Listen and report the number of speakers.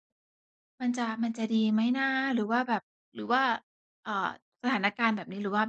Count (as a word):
one